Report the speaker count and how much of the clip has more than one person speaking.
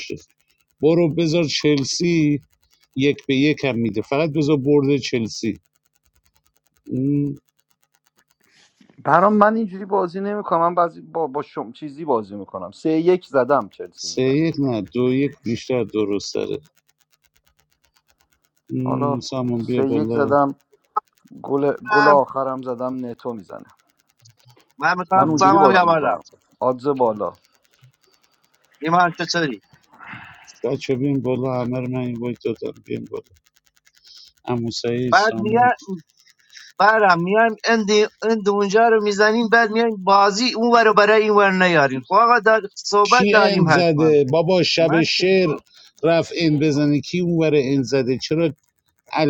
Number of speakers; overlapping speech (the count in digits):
3, about 10%